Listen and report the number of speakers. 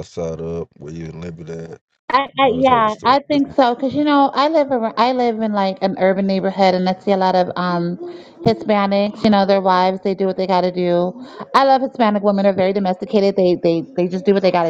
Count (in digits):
2